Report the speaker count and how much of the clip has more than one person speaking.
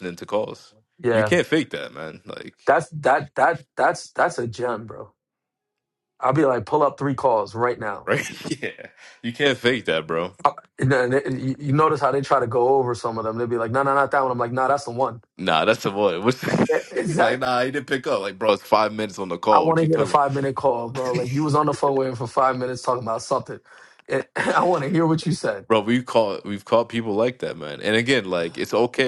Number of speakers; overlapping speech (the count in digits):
2, about 4%